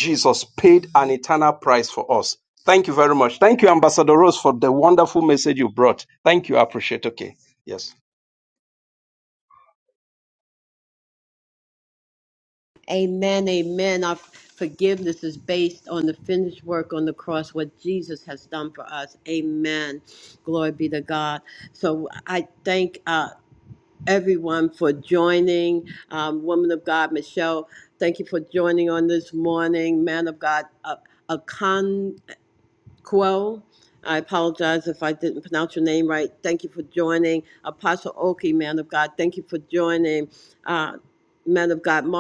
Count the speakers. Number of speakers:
two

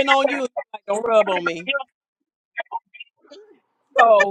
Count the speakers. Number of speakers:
one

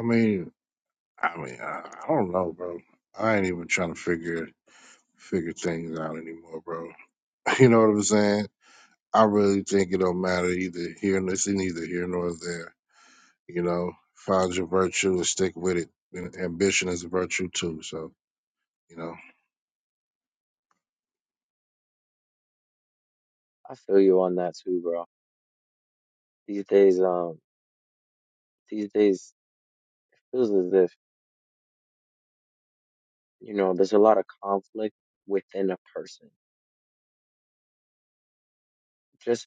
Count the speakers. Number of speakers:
two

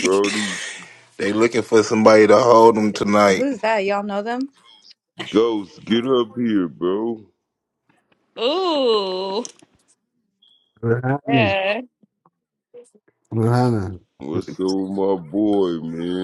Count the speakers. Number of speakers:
five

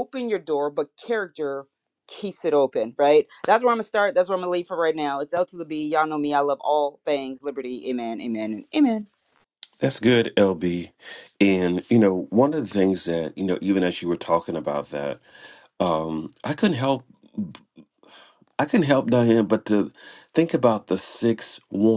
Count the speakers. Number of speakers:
two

